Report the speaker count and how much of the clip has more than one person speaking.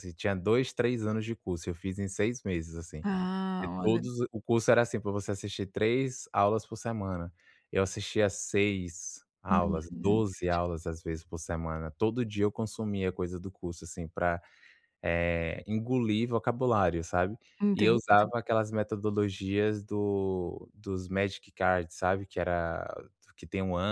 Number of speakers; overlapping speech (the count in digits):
2, about 6%